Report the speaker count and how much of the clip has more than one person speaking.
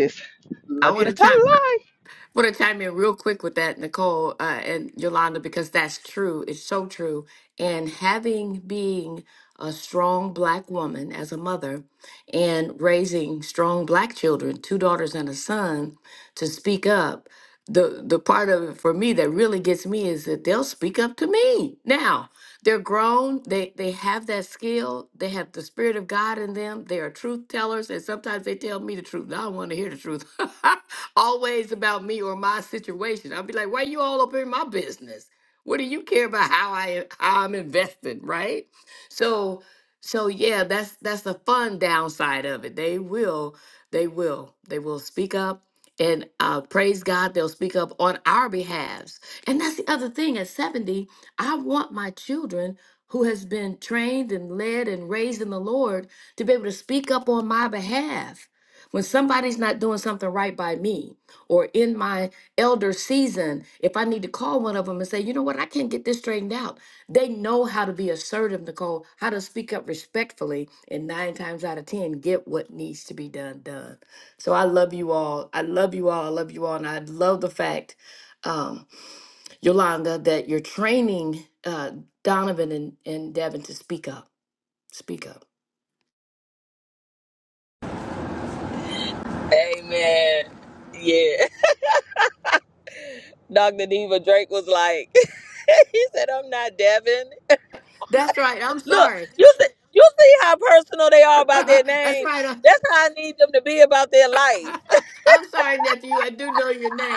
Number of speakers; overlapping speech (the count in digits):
3, about 2%